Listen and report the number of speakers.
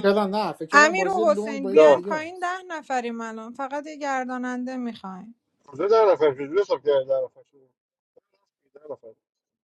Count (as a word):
three